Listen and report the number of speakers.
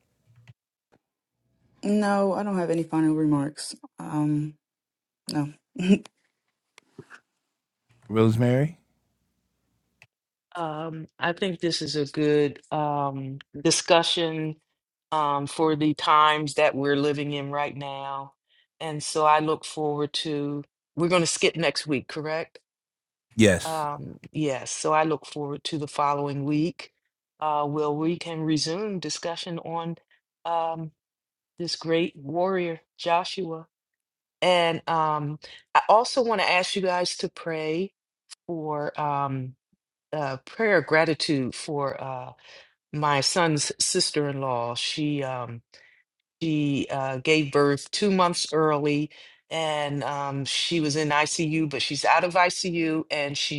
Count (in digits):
3